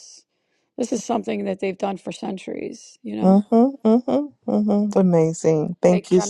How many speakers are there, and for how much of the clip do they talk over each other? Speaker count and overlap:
2, about 5%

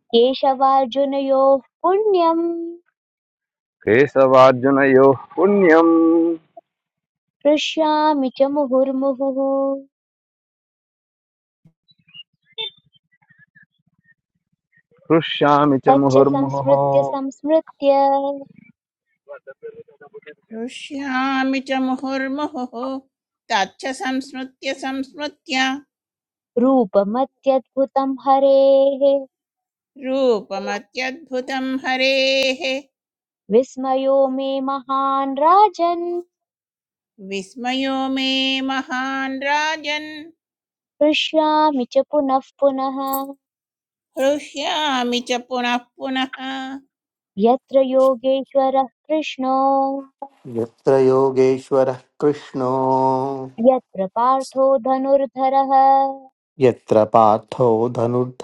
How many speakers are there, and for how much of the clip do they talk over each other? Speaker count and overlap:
4, about 2%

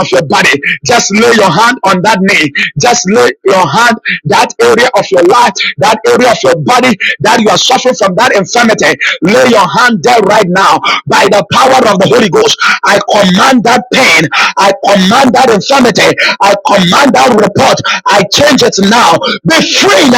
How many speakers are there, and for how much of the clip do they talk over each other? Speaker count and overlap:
1, no overlap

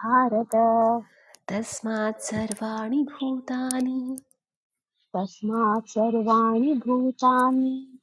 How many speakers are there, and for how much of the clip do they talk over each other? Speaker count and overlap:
2, no overlap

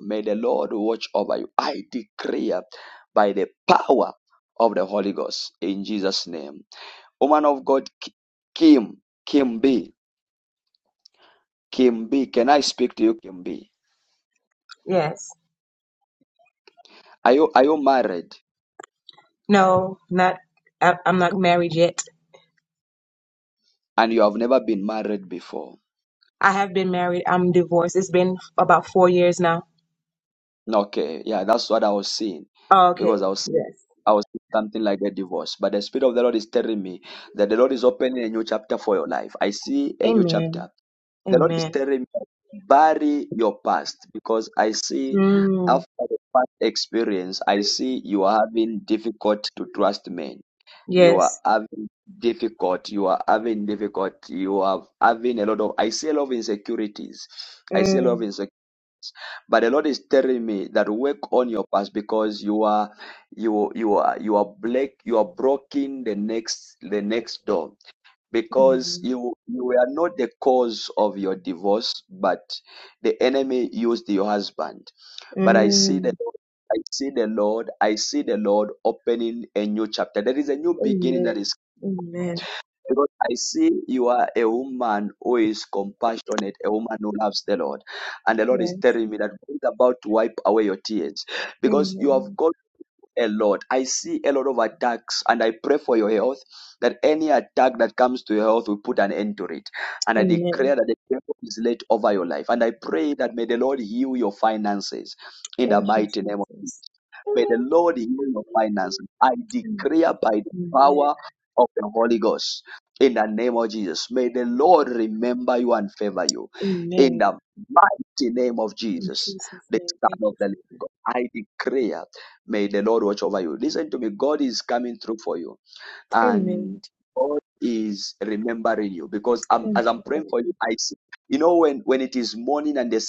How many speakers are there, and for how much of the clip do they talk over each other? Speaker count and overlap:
2, about 8%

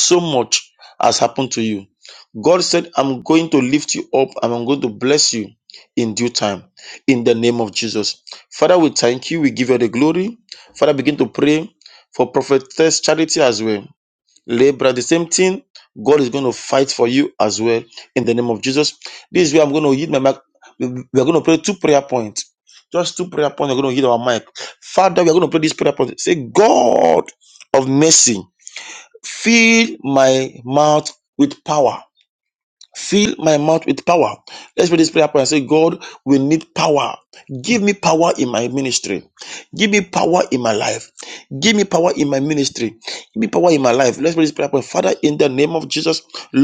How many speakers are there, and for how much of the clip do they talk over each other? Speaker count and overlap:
1, no overlap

